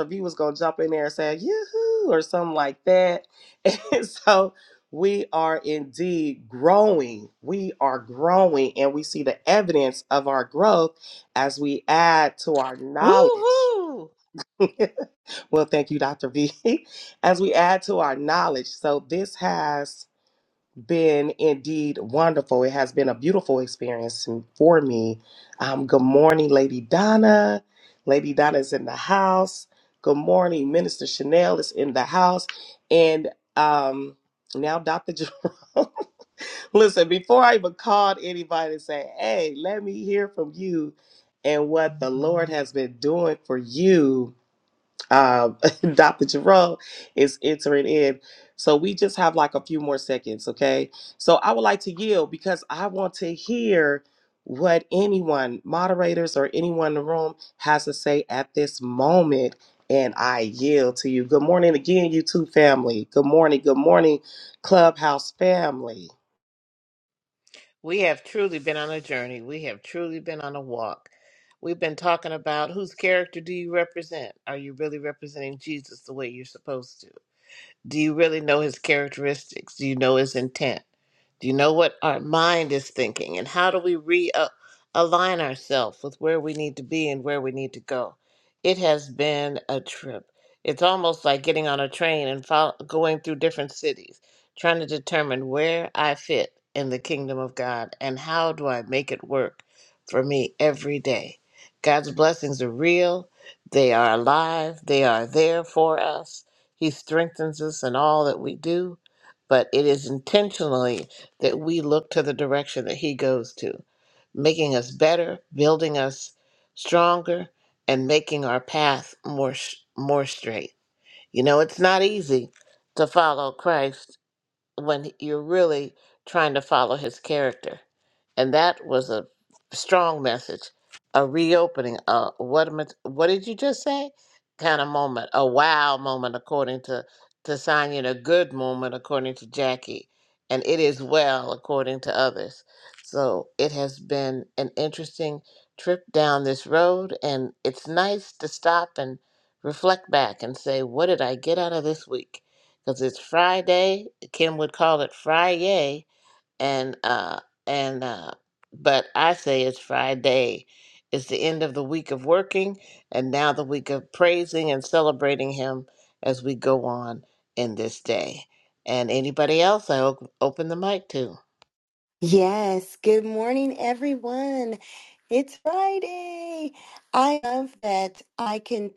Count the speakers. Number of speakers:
3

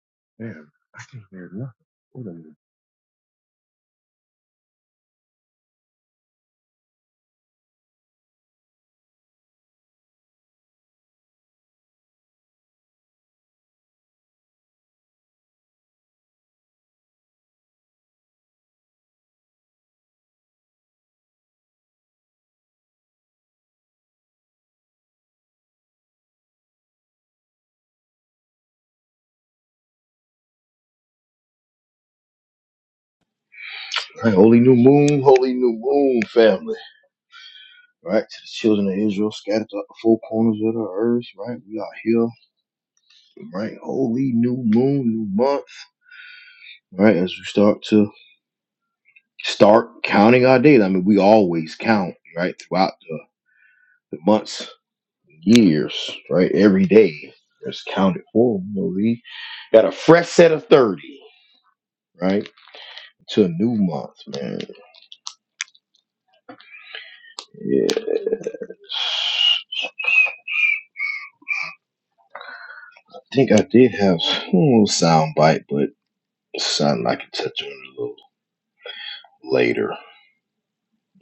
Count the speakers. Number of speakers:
2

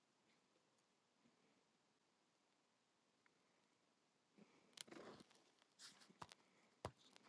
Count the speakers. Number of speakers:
0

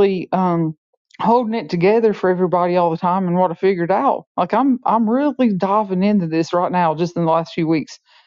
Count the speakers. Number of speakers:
1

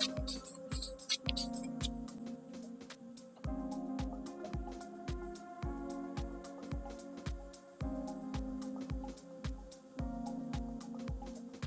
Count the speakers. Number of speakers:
0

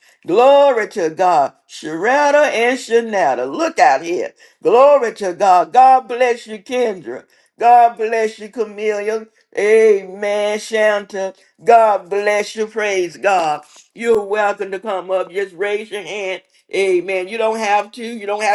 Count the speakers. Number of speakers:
1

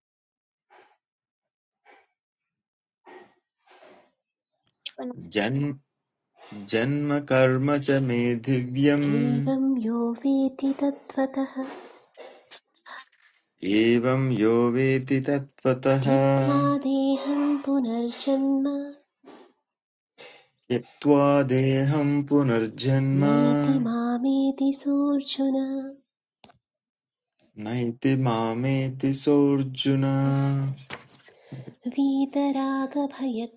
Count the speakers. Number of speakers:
2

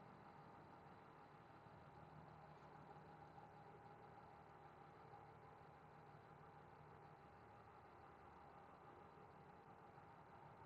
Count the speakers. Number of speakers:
0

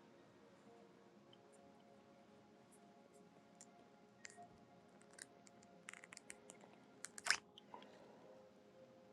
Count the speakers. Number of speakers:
0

